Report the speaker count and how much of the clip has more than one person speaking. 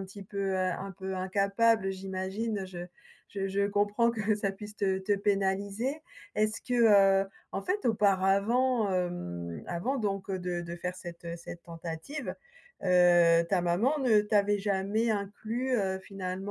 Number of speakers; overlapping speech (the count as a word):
one, no overlap